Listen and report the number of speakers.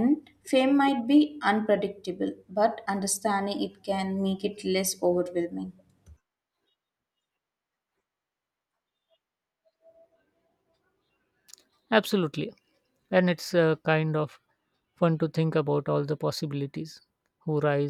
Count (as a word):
two